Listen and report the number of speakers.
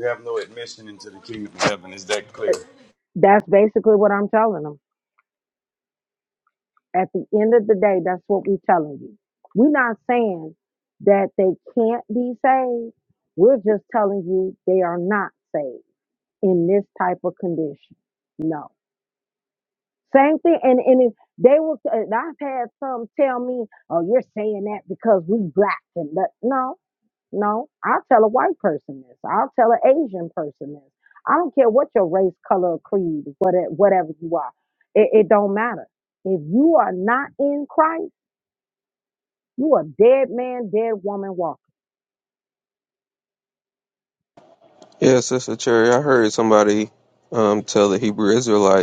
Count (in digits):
3